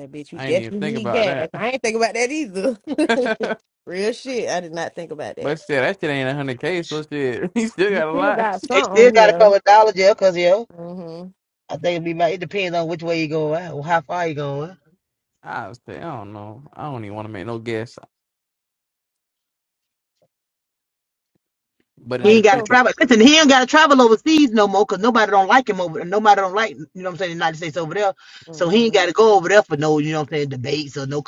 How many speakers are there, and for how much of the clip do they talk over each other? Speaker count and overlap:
3, about 11%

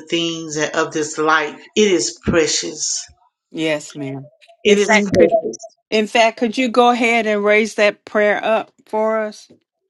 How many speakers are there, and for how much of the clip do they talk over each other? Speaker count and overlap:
2, about 8%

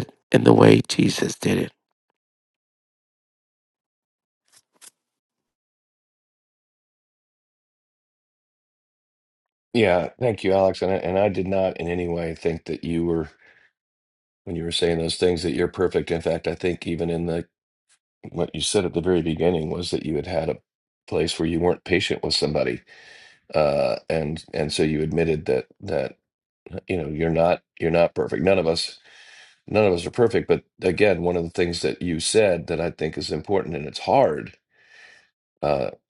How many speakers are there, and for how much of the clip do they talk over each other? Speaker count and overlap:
2, no overlap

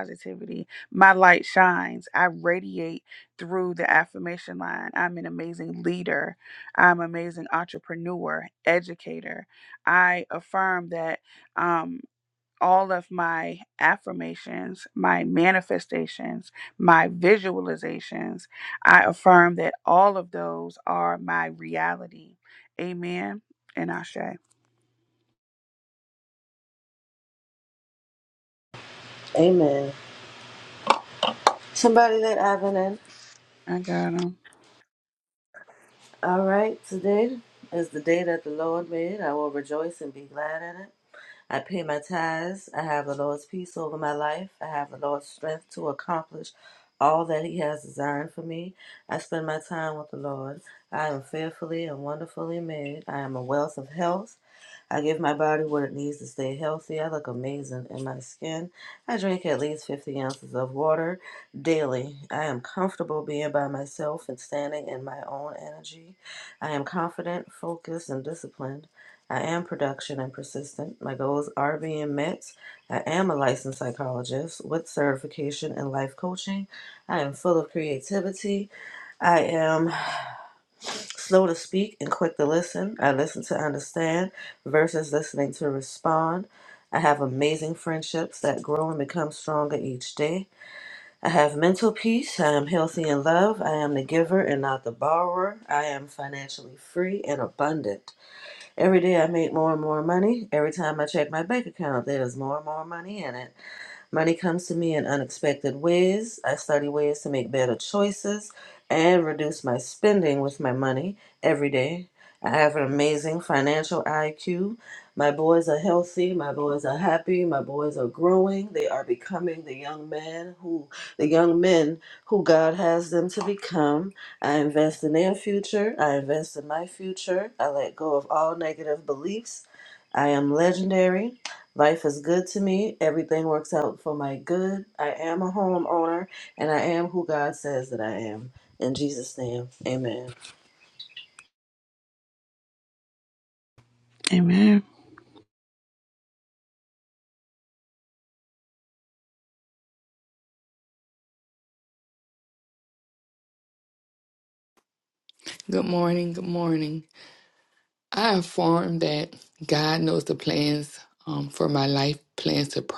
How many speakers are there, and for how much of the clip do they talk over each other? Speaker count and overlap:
3, no overlap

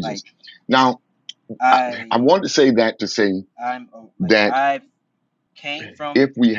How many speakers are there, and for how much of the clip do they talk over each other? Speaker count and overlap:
2, about 21%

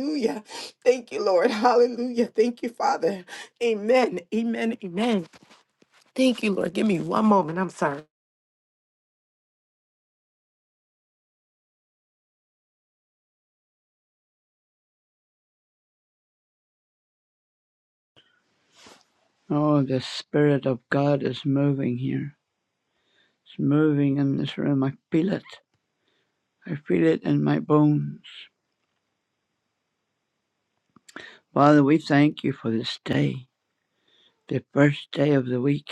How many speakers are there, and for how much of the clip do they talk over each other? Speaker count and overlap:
2, no overlap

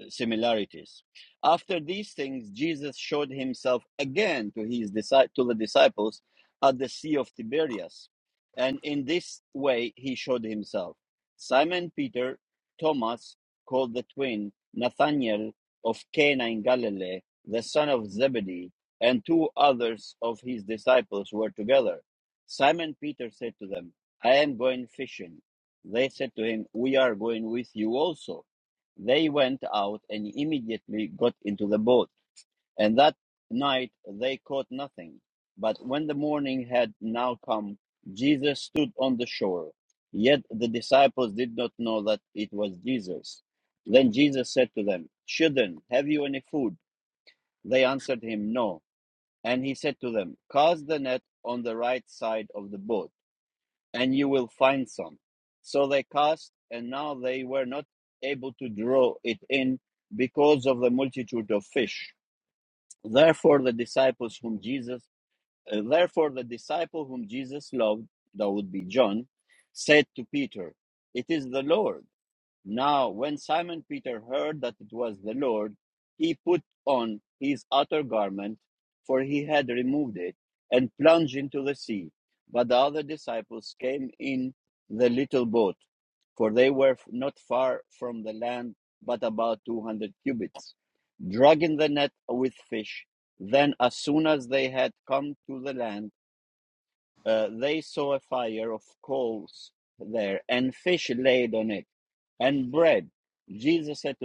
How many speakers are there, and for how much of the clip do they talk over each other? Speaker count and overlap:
1, no overlap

